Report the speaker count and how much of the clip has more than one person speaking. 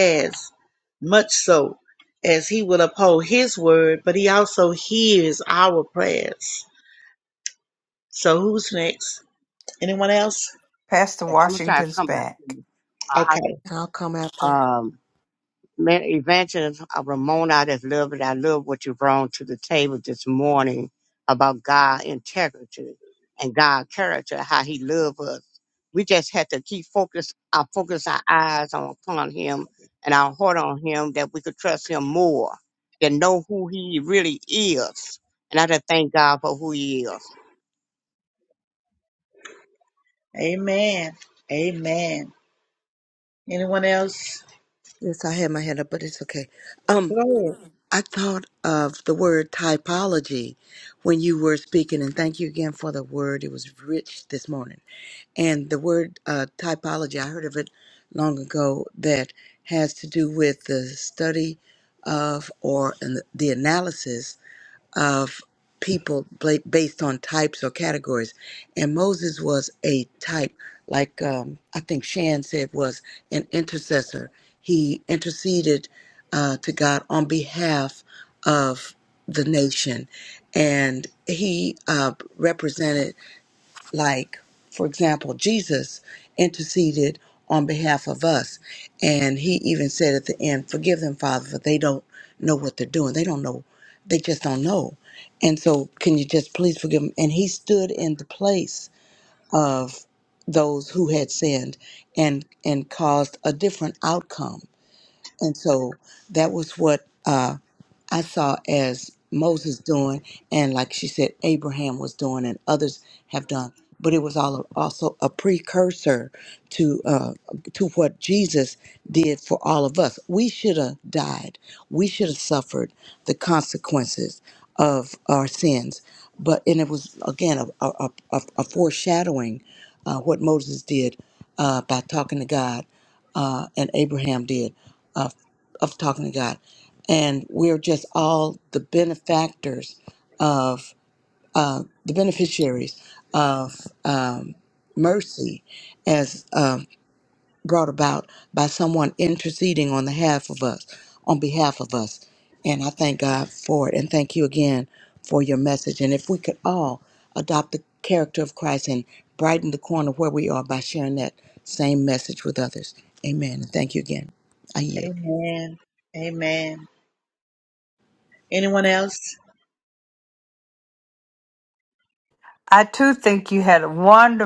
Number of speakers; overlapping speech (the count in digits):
4, about 1%